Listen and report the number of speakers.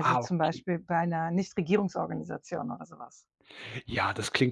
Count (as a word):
two